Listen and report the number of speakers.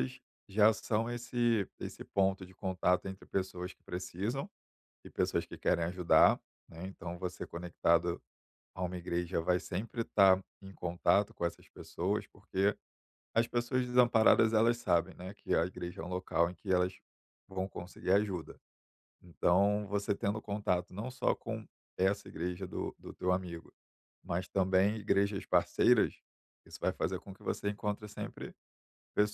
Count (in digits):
1